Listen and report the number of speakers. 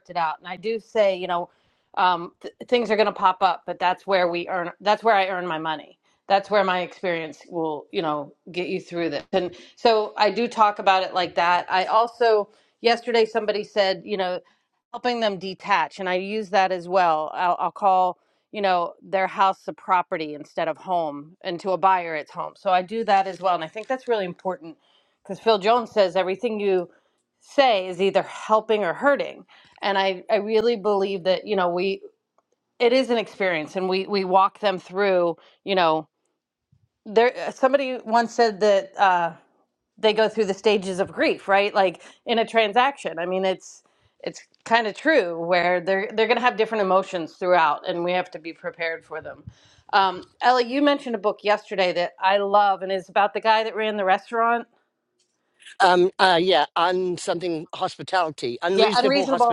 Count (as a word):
two